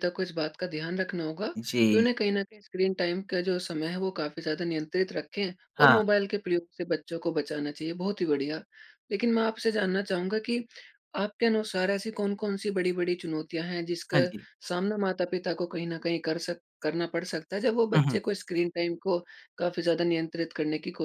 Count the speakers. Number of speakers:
two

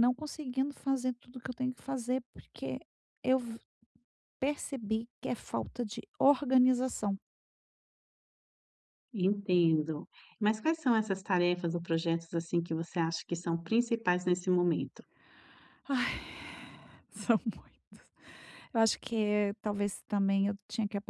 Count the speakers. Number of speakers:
two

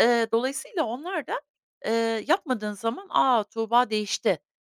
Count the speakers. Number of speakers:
one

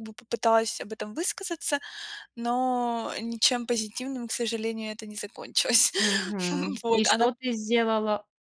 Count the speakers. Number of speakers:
two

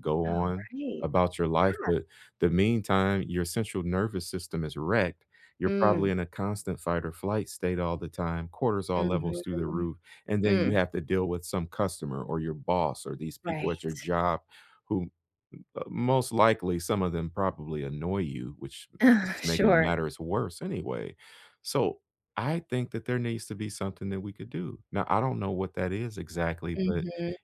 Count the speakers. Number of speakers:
two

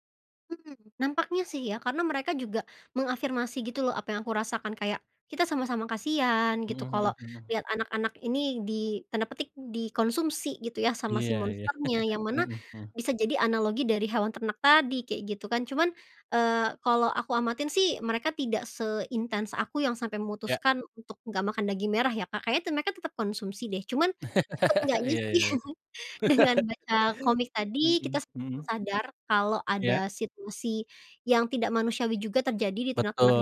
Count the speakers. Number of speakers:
two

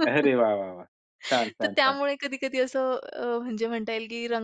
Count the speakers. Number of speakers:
two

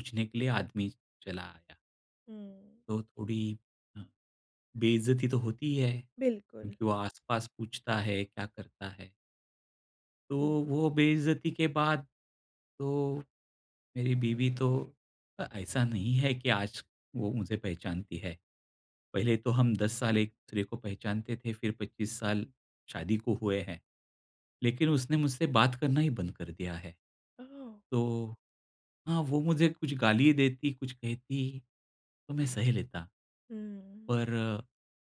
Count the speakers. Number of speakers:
two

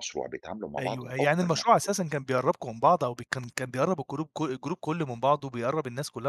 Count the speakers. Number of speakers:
two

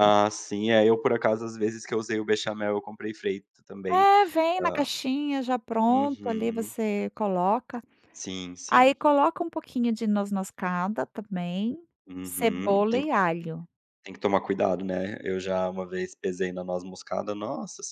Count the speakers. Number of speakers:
two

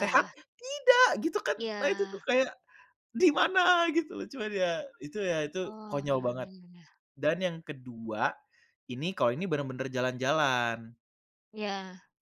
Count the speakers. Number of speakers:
two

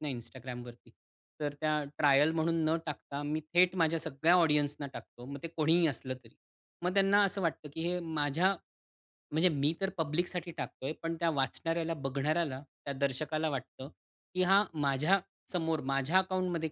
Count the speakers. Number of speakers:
one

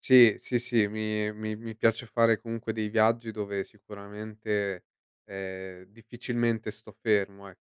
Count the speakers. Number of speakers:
one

